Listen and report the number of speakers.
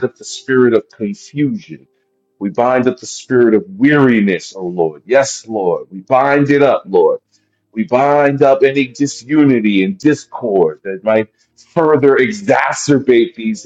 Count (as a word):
one